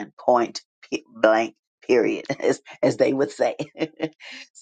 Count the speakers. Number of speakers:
one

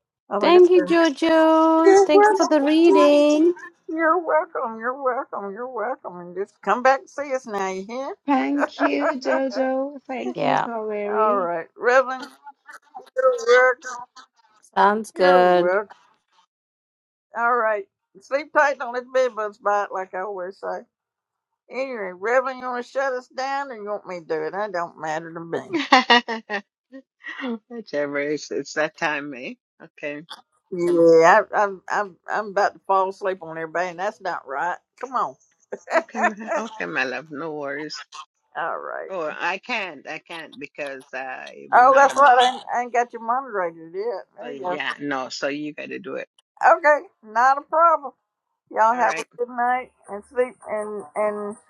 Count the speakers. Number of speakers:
four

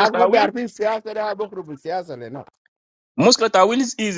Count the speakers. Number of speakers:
two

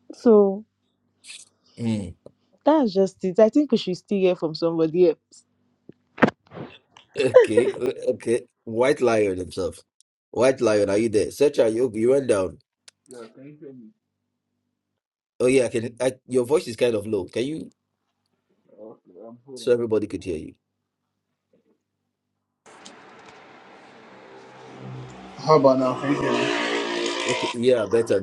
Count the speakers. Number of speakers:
three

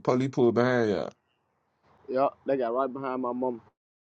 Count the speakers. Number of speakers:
two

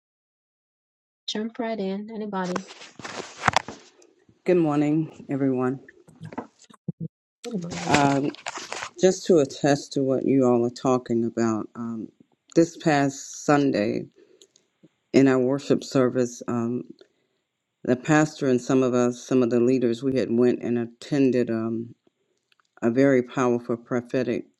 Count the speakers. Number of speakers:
two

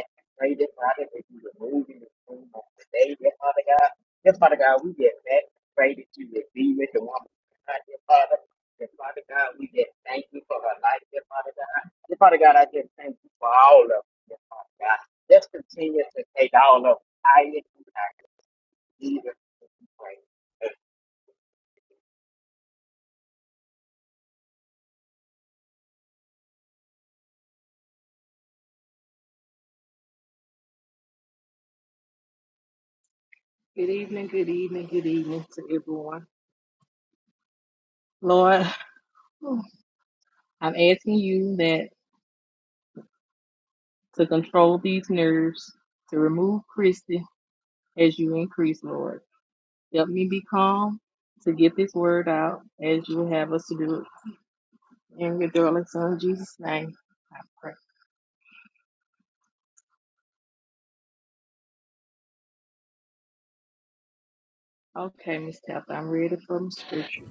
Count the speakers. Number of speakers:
two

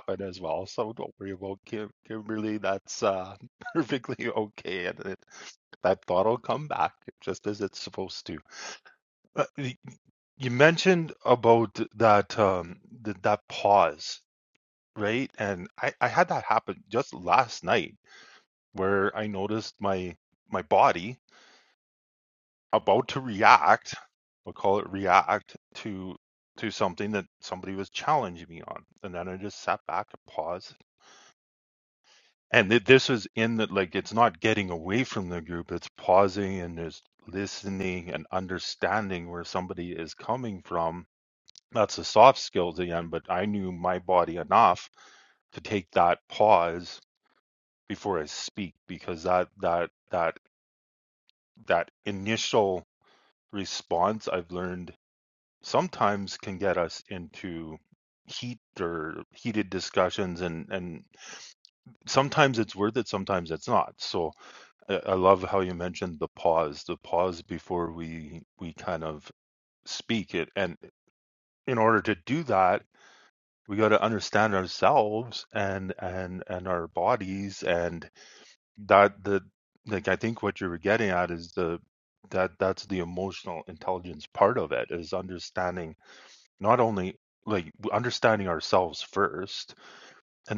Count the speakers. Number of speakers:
one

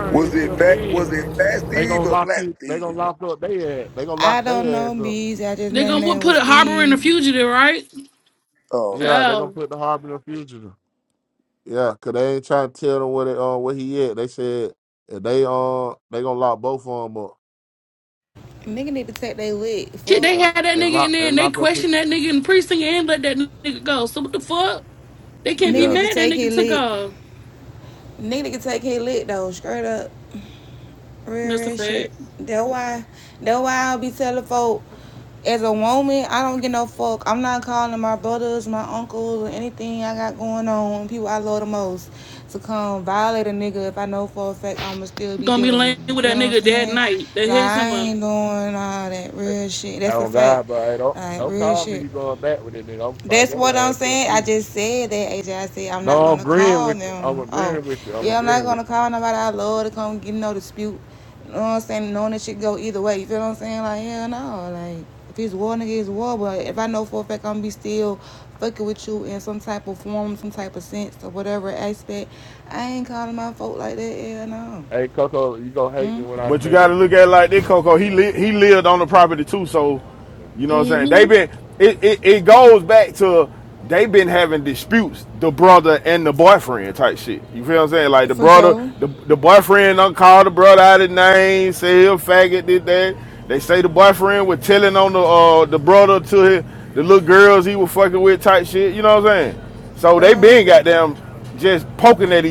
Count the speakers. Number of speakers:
five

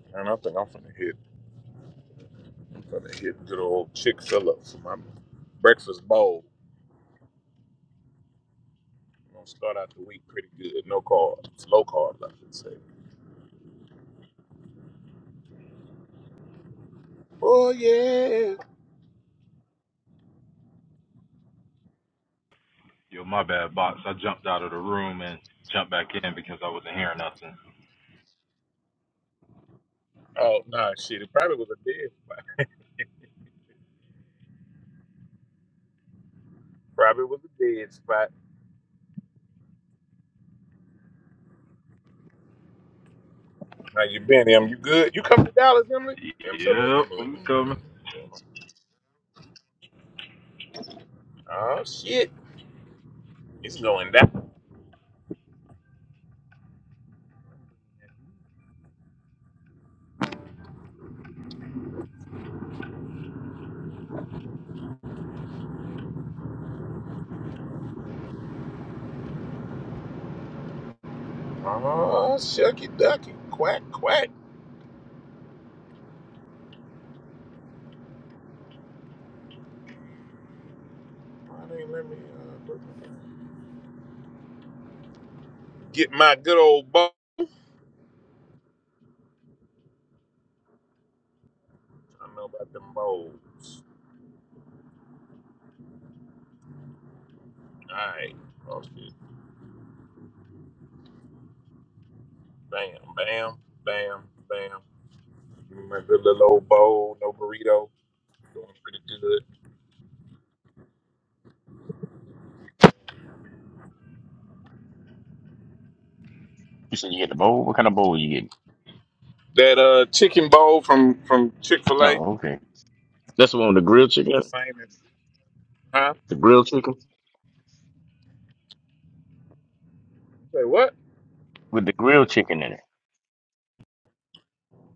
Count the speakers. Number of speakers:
three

